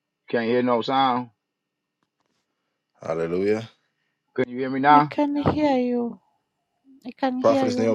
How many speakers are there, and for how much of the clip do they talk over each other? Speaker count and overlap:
three, about 9%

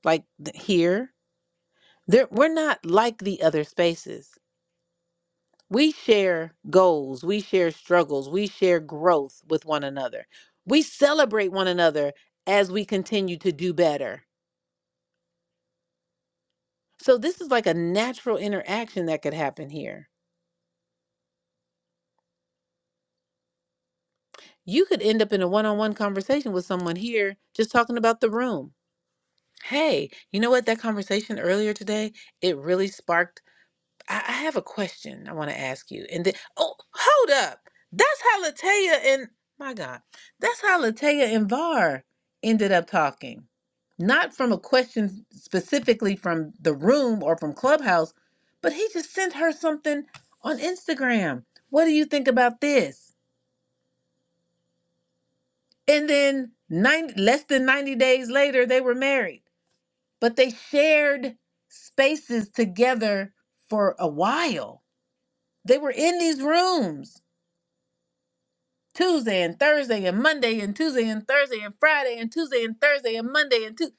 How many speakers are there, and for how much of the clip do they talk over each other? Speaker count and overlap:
one, no overlap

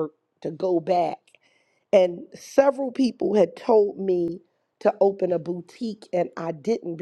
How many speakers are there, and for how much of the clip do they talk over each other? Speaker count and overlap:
one, no overlap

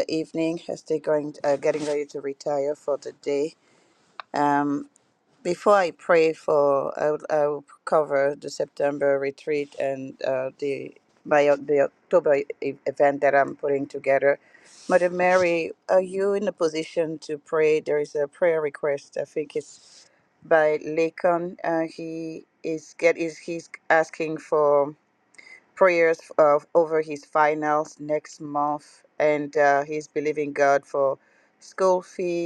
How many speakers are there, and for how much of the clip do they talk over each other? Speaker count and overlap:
one, no overlap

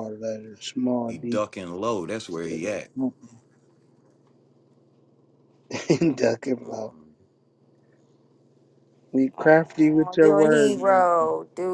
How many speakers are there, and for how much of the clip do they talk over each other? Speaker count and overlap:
three, about 19%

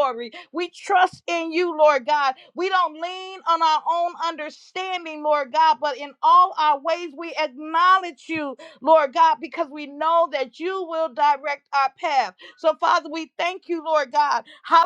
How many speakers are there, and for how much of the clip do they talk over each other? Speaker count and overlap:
one, no overlap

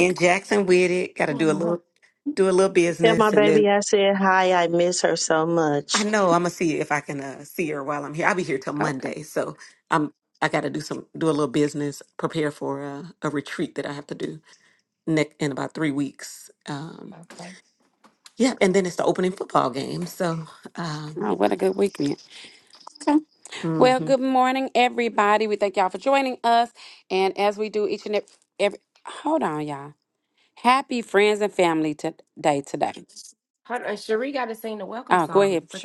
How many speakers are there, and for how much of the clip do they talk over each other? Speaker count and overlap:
four, about 9%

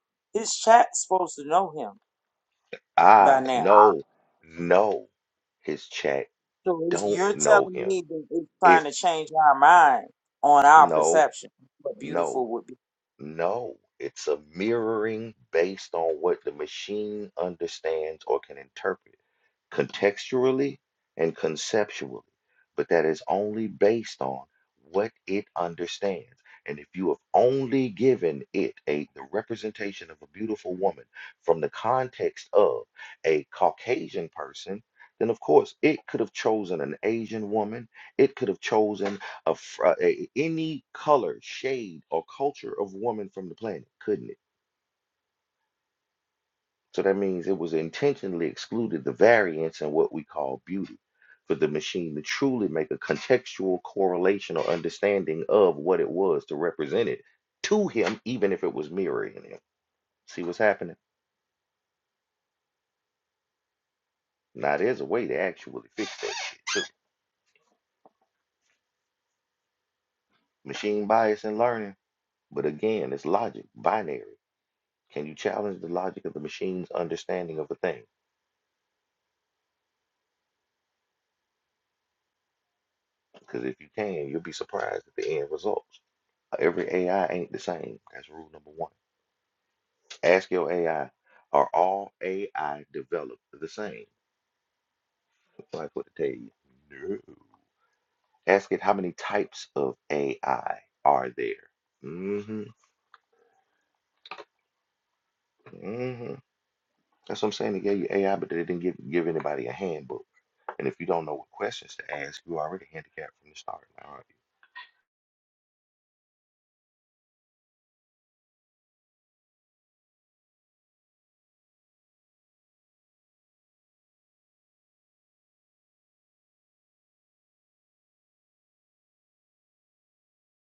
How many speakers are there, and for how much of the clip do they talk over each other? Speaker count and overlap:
two, about 2%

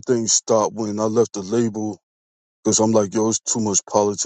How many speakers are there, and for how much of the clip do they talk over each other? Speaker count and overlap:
one, no overlap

